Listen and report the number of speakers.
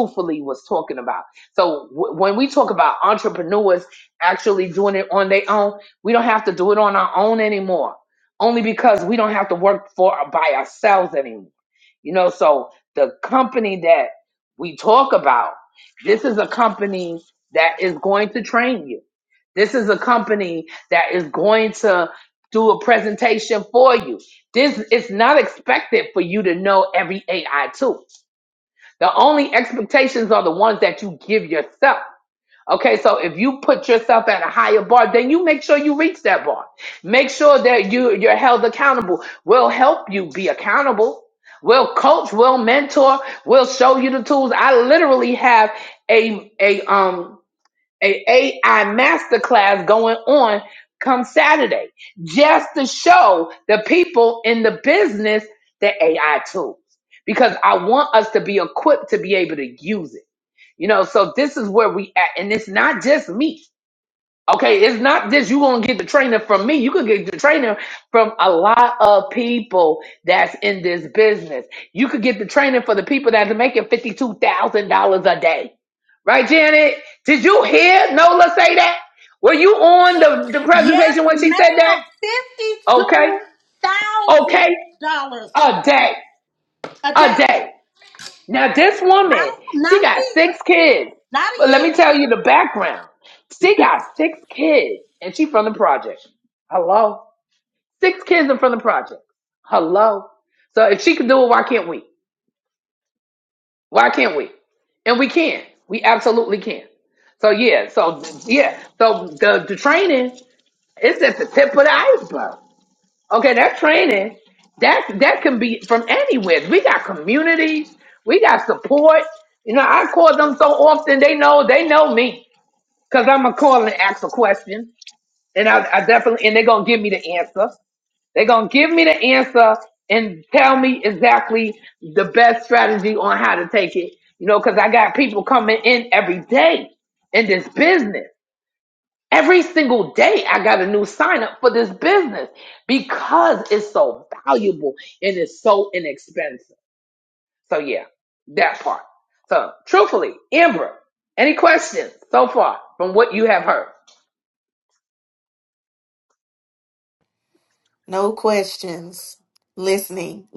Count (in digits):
3